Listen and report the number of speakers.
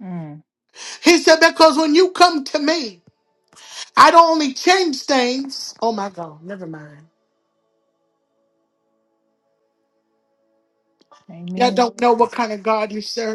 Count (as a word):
two